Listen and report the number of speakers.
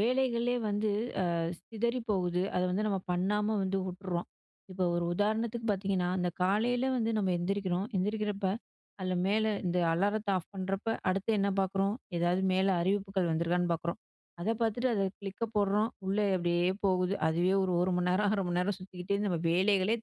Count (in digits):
1